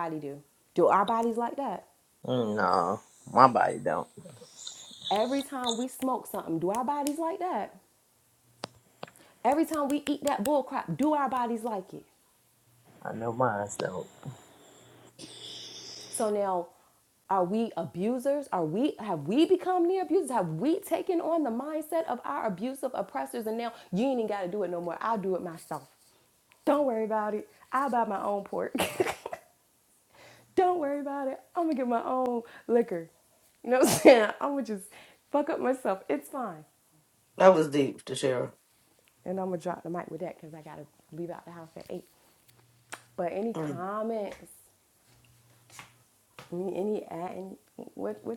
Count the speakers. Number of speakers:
3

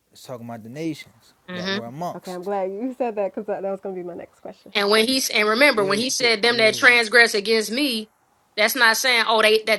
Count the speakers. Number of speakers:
3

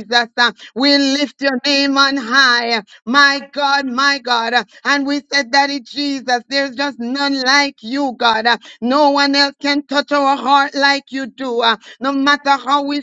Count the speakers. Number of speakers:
1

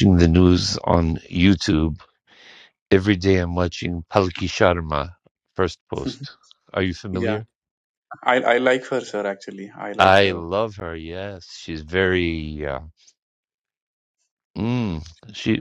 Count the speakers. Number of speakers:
2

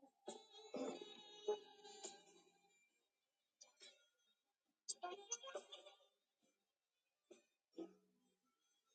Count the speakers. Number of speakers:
0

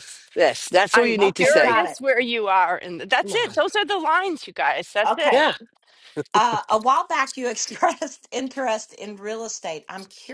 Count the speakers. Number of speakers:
3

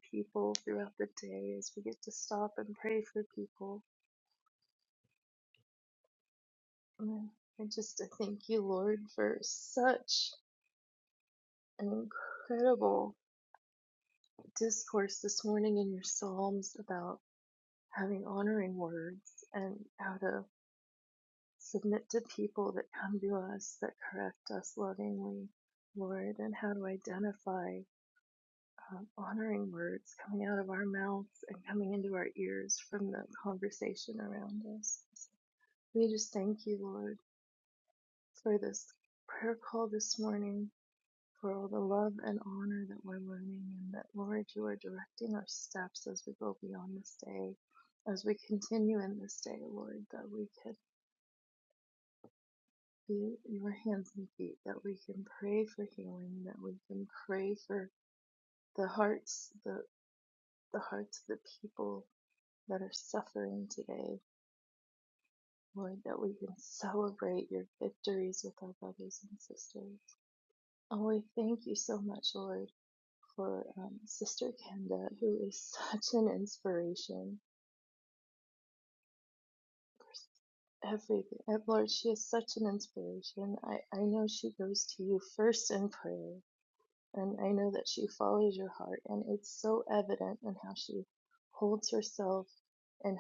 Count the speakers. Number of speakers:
1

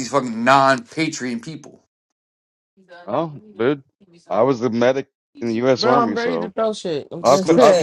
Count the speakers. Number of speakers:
3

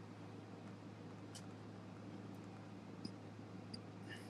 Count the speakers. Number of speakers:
0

